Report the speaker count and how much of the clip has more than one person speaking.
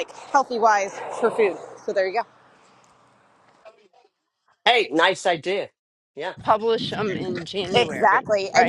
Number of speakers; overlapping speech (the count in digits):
3, about 11%